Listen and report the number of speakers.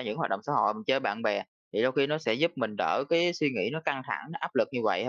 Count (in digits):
1